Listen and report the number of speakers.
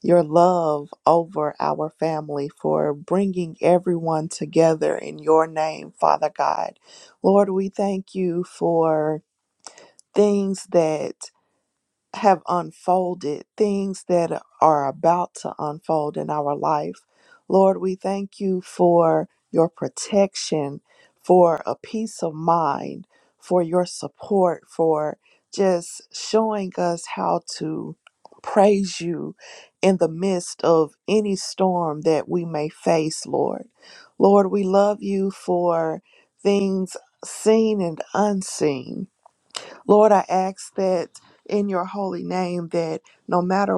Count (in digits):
1